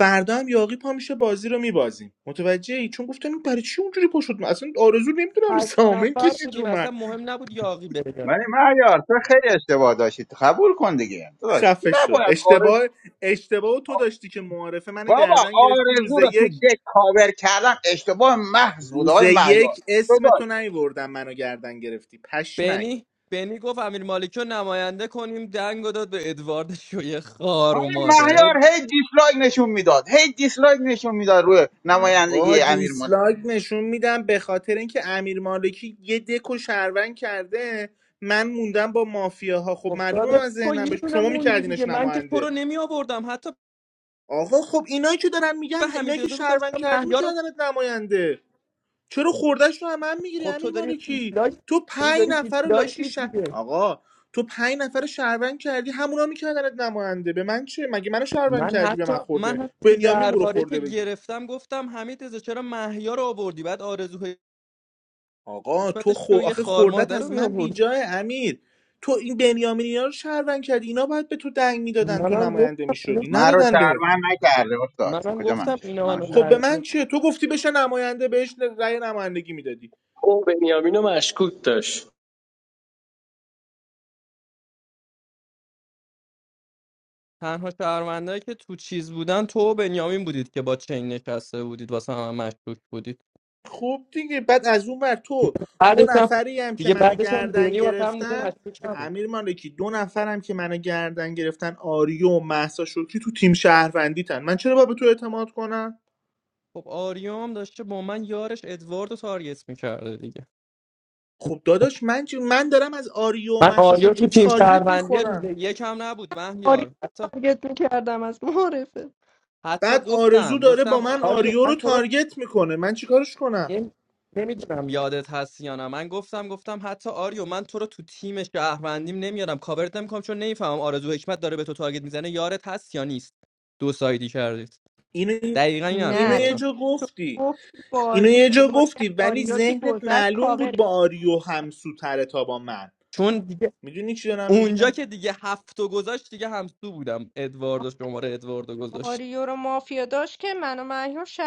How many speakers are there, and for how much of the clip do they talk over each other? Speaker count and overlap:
five, about 21%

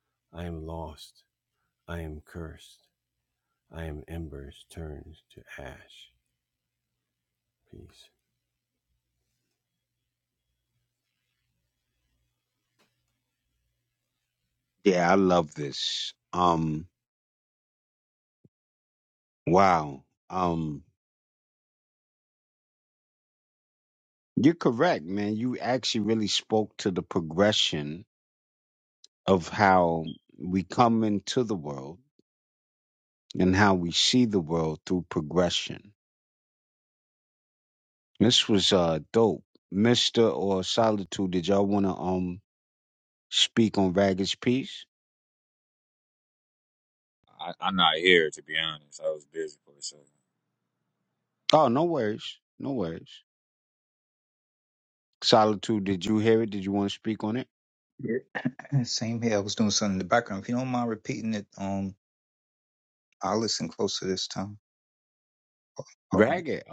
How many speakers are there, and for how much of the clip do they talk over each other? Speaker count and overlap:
four, under 1%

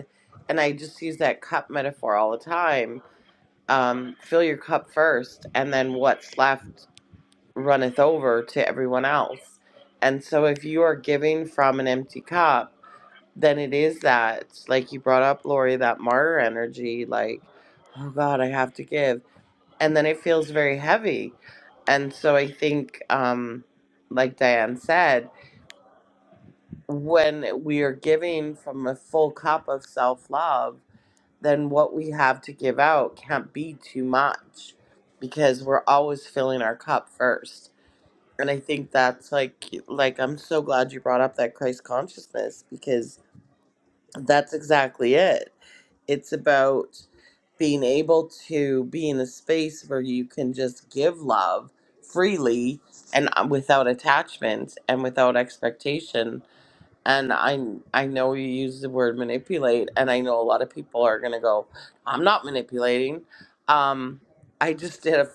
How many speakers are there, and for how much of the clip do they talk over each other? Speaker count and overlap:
one, no overlap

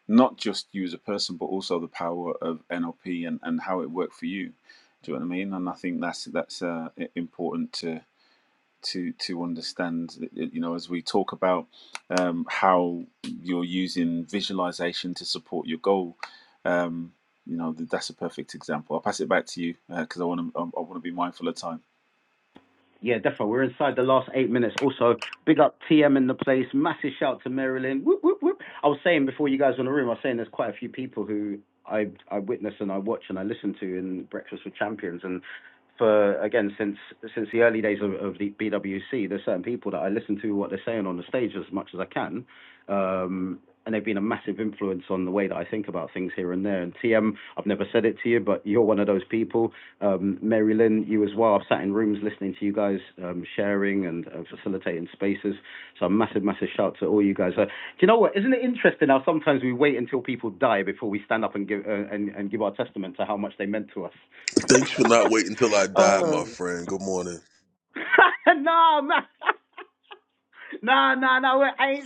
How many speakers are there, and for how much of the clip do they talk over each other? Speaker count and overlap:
three, about 1%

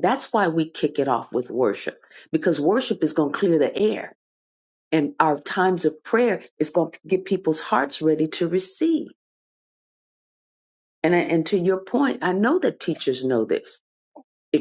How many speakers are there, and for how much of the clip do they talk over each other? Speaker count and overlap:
one, no overlap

